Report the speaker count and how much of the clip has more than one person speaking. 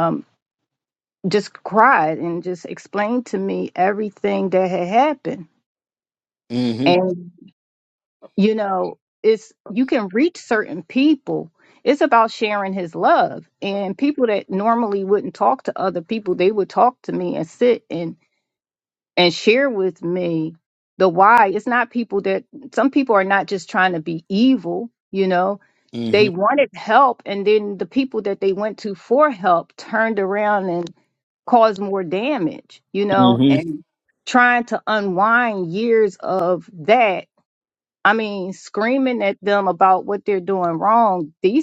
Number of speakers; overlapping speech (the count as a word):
two, about 2%